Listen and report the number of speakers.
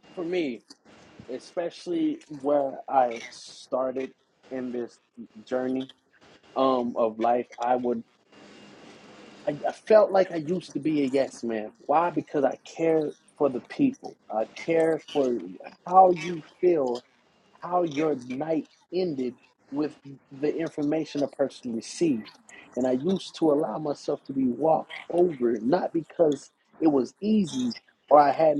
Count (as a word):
one